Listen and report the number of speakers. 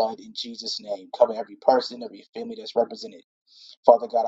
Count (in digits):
1